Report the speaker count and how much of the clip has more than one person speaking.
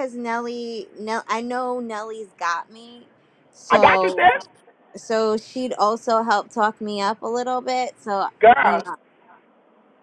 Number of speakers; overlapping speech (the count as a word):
two, about 9%